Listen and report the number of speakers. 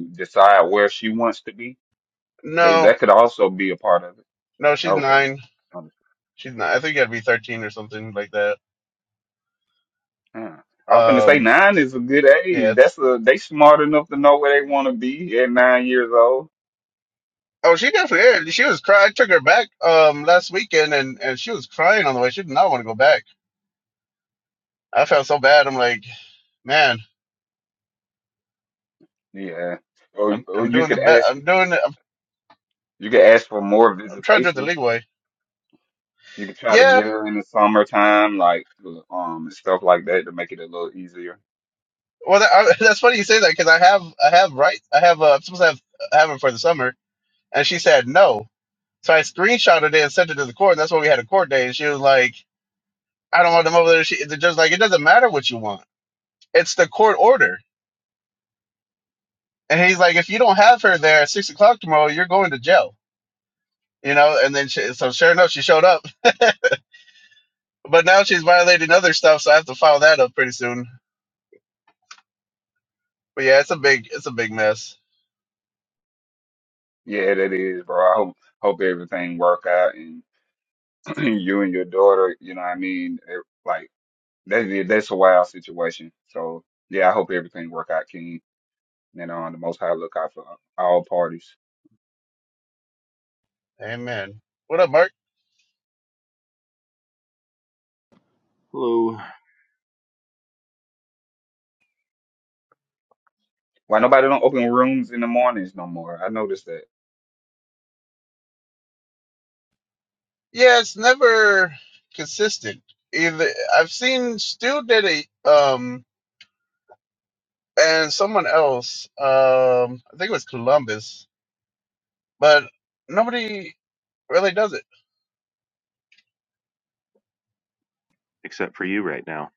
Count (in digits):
3